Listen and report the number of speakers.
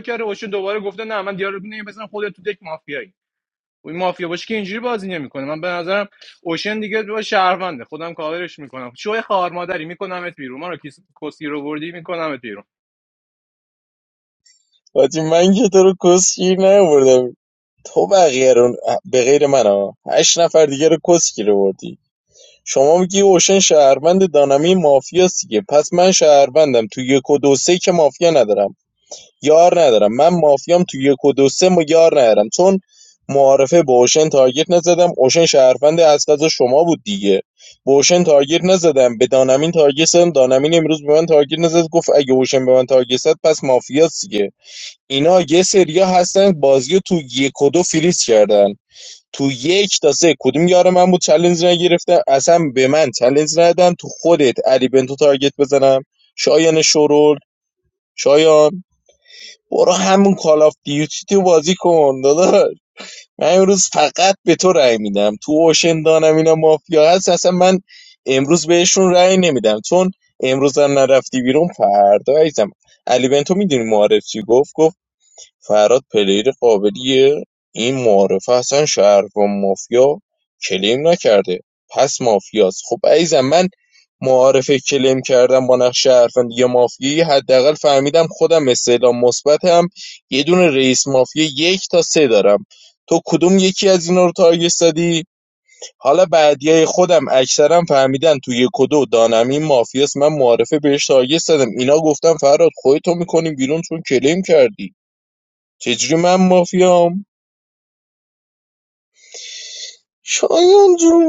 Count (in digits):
2